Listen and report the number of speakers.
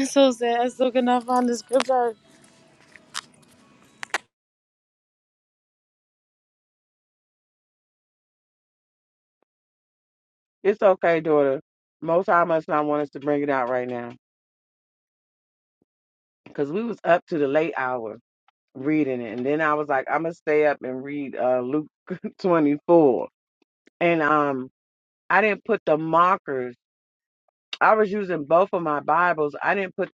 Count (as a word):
two